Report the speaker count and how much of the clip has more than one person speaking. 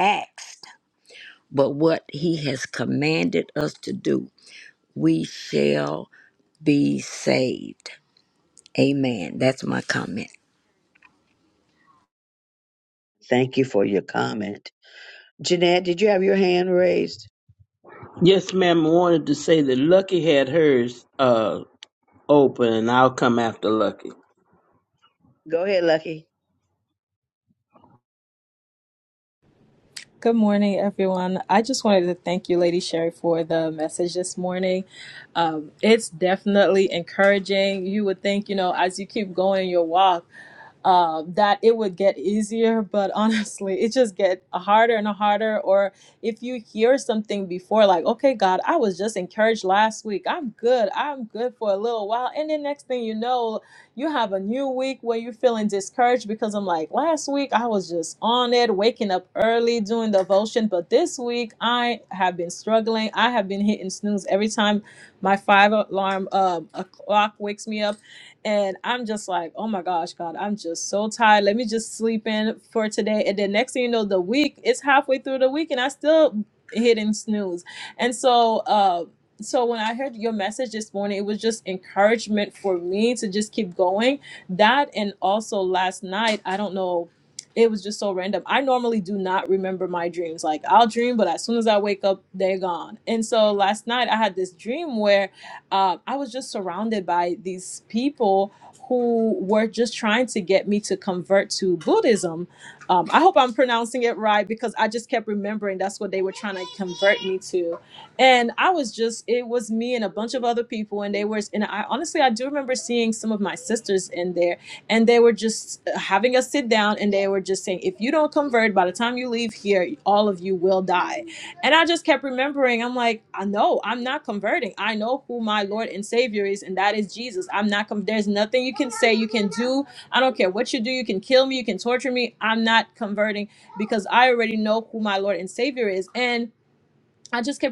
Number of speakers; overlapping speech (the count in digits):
4, no overlap